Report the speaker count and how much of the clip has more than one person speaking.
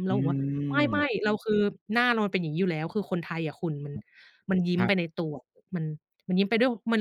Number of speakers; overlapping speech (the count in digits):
2, about 8%